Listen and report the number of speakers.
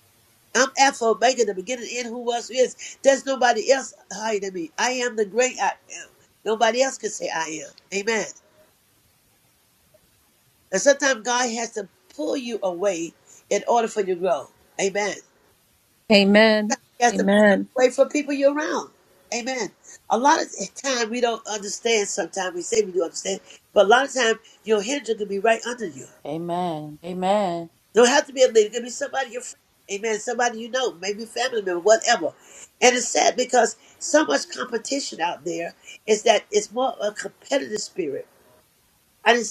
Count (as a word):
three